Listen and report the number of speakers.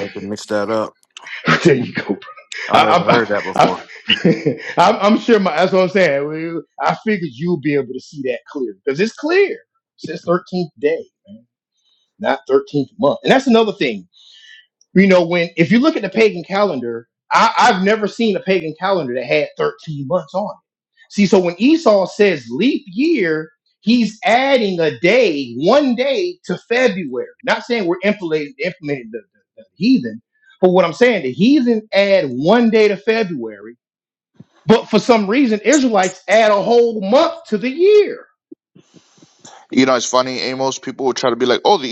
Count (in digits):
3